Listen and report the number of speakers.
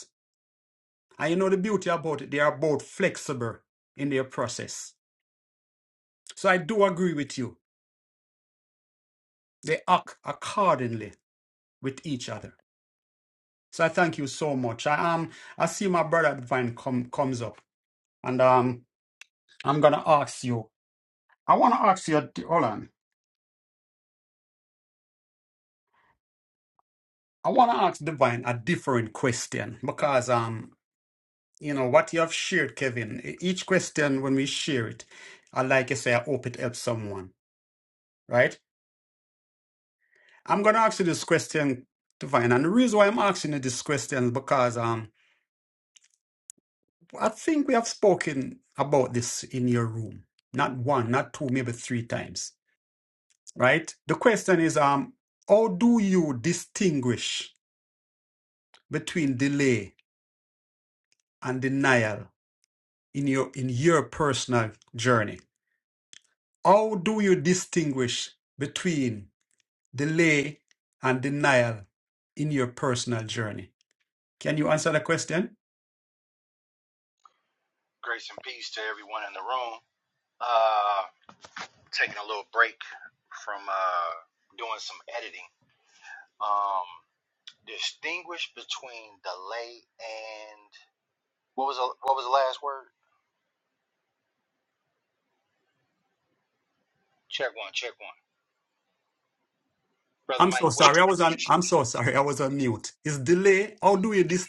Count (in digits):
2